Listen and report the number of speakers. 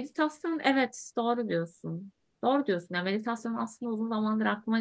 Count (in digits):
1